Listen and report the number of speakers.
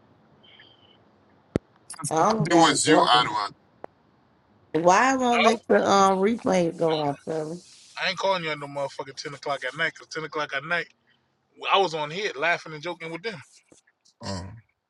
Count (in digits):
3